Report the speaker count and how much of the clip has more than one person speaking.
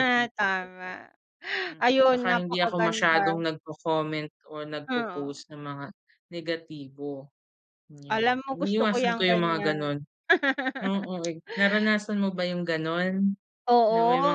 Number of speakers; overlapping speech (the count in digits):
2, about 32%